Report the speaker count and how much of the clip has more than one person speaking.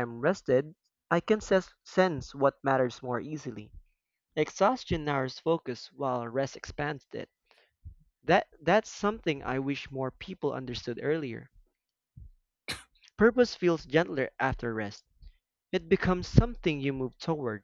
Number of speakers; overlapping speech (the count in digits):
1, no overlap